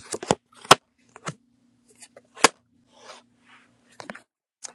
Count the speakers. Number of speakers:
0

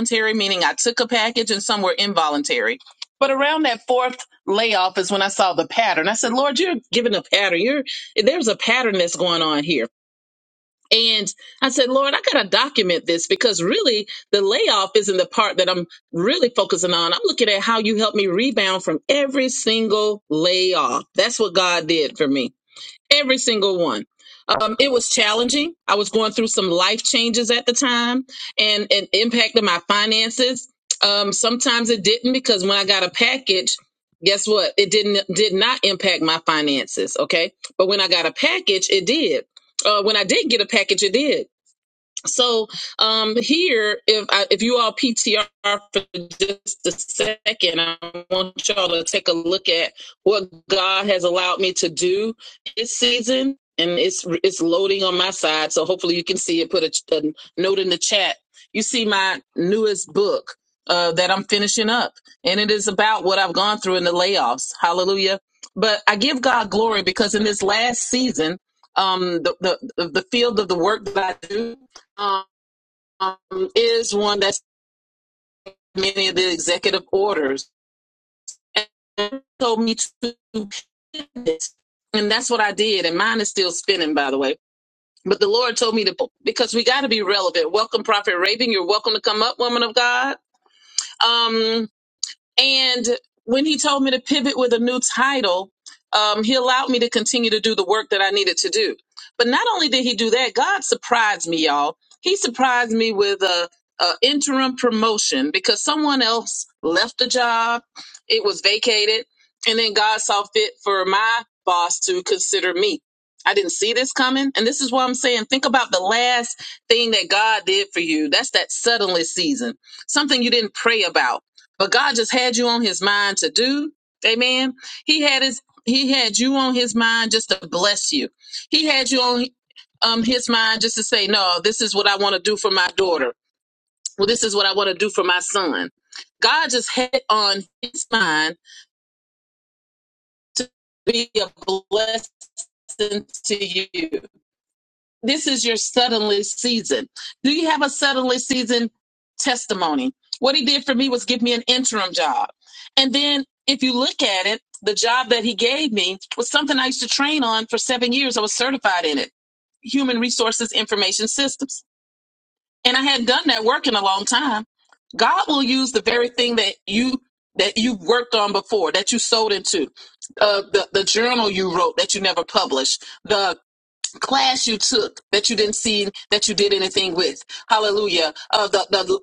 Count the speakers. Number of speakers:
1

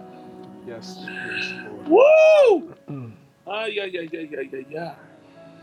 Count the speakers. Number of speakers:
2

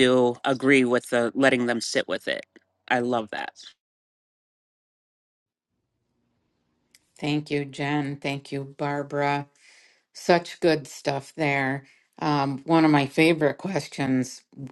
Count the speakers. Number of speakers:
2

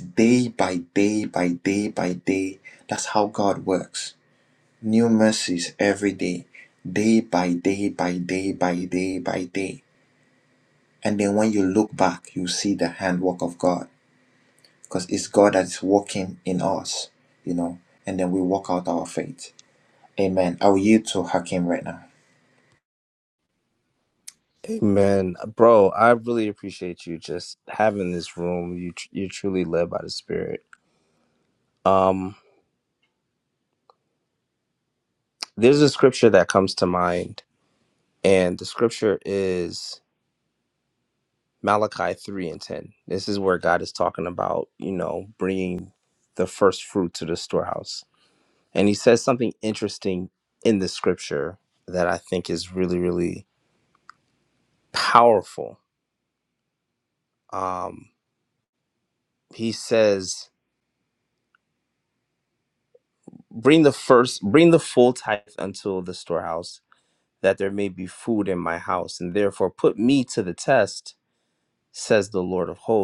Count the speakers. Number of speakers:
2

